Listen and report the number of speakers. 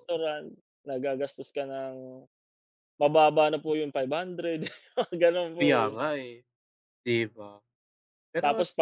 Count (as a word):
two